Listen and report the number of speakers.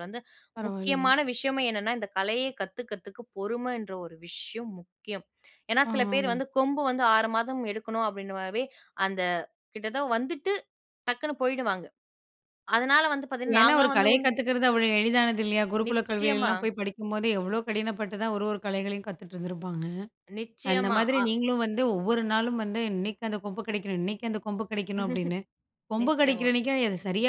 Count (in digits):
2